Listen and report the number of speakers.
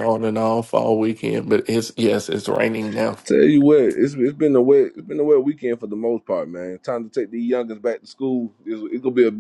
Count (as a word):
two